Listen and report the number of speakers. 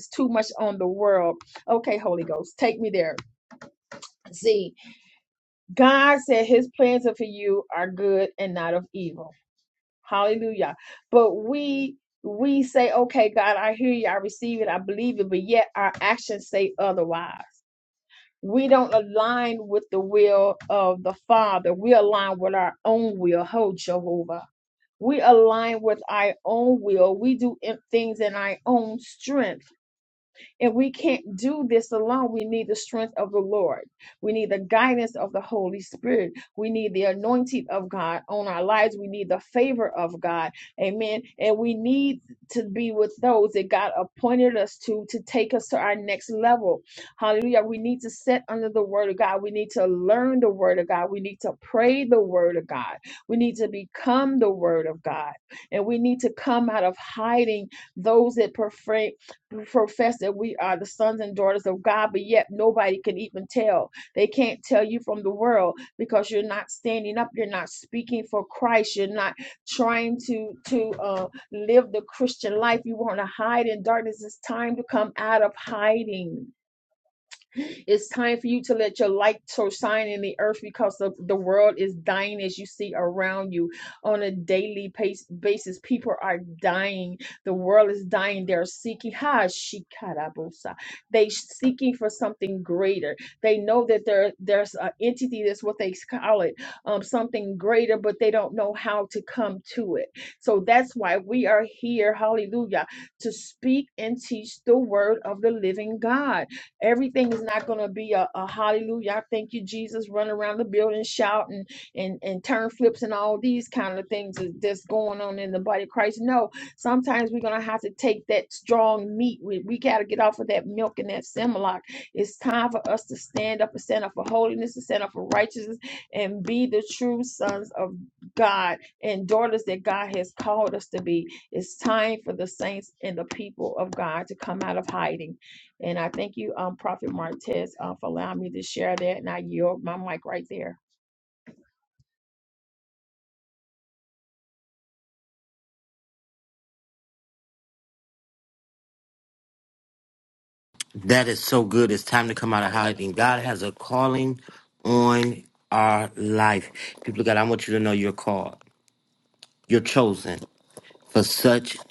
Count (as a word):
two